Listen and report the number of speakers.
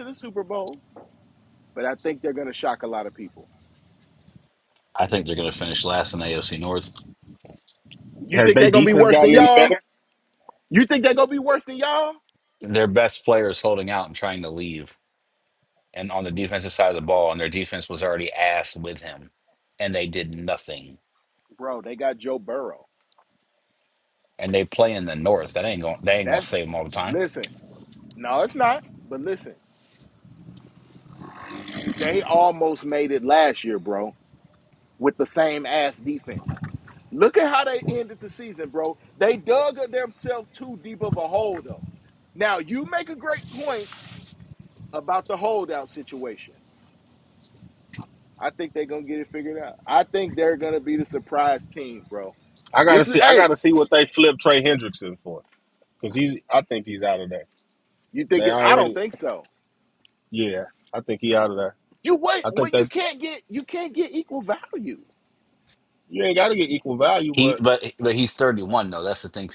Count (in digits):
3